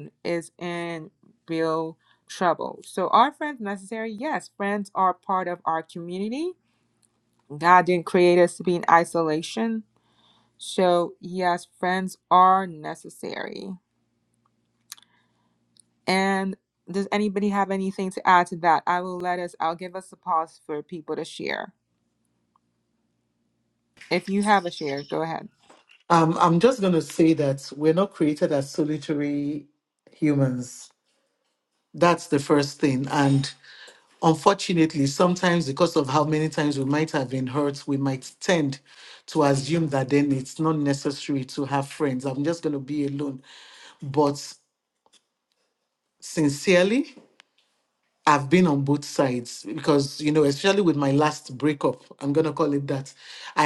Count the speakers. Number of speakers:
two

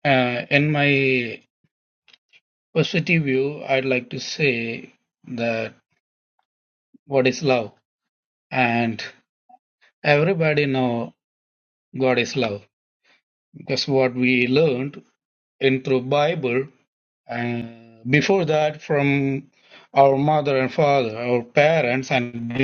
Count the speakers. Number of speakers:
one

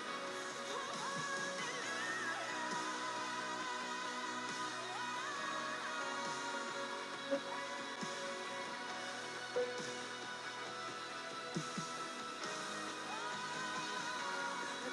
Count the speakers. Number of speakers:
zero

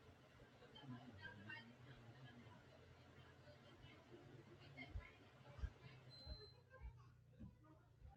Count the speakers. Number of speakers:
zero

